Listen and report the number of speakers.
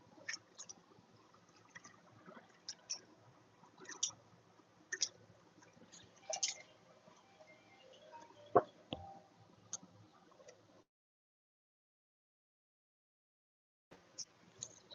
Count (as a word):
zero